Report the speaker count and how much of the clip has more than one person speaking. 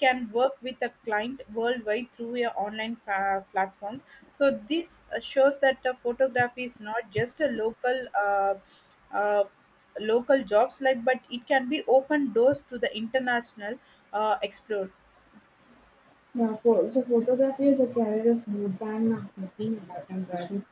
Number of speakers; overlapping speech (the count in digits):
2, no overlap